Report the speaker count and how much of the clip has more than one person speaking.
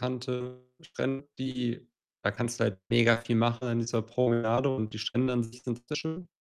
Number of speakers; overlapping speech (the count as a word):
one, no overlap